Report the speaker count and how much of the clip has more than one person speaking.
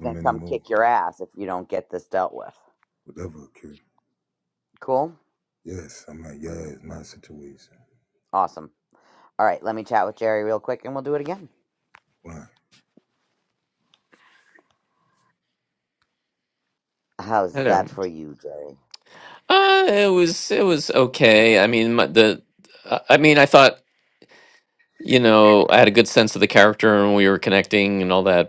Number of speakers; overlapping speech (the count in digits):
3, about 3%